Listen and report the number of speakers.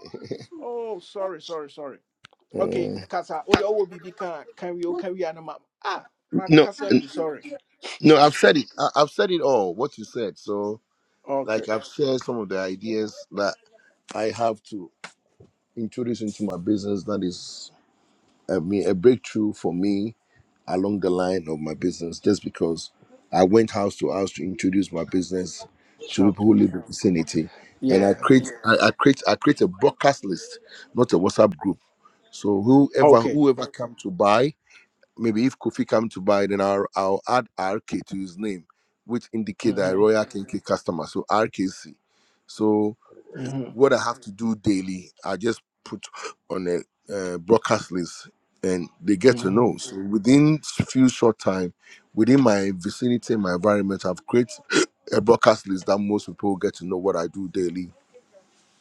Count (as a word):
two